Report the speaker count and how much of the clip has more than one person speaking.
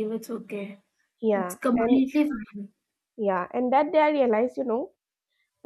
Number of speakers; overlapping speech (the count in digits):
2, about 12%